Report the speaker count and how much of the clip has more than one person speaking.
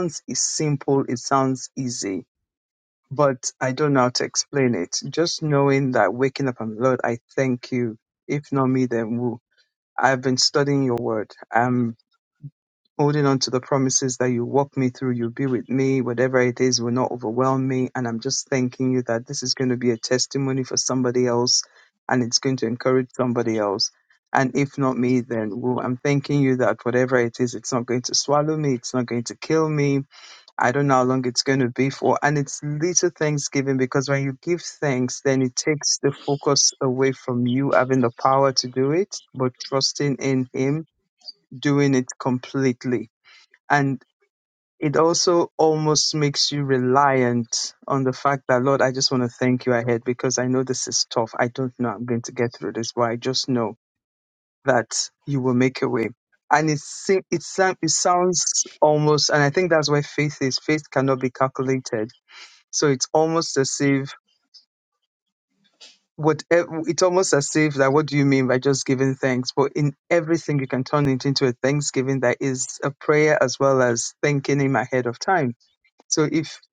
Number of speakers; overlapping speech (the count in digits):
1, no overlap